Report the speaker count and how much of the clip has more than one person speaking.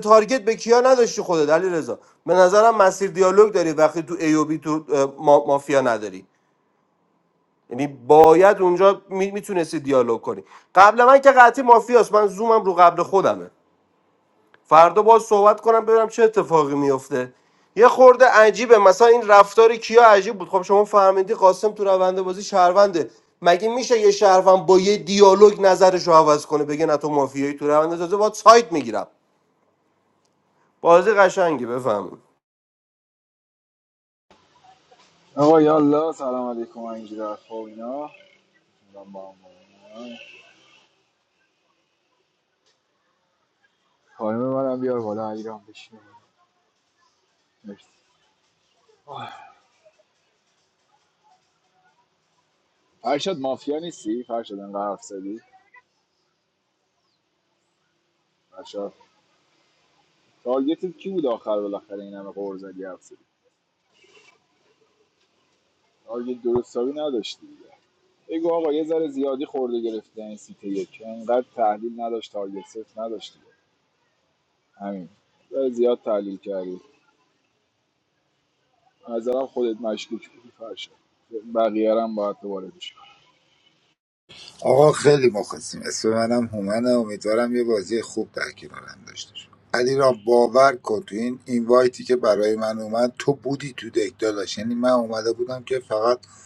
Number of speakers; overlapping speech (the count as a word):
three, no overlap